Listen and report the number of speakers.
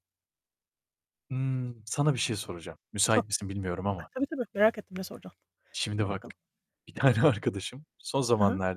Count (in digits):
2